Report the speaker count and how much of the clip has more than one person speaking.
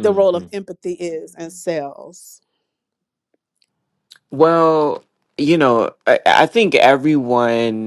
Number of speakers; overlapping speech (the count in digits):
2, about 3%